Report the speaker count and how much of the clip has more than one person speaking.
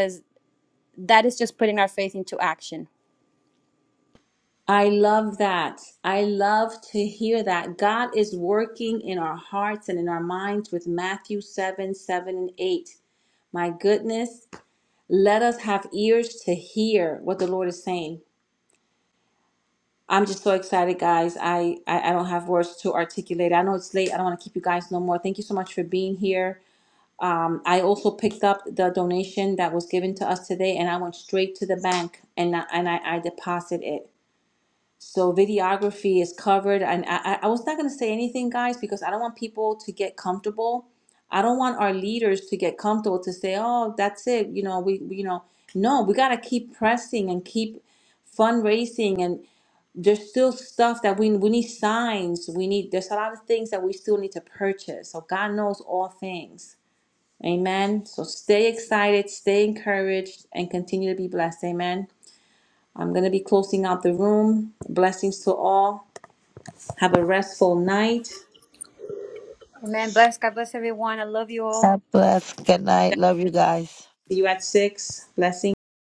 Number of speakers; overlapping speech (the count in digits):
3, under 1%